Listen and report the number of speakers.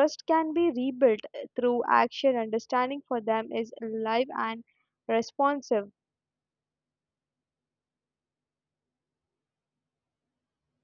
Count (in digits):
1